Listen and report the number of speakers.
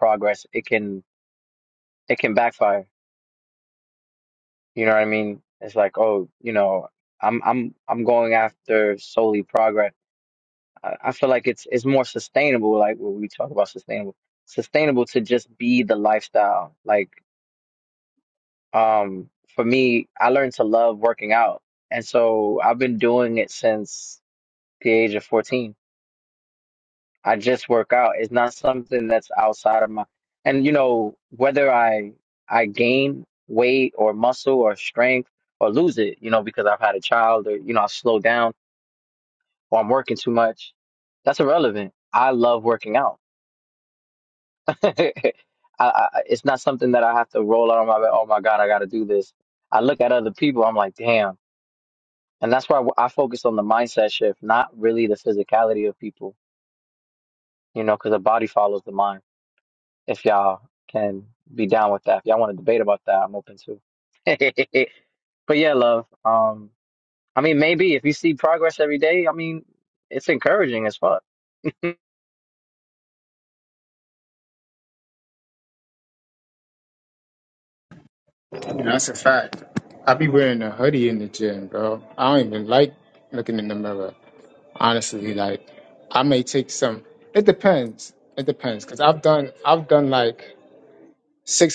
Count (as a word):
two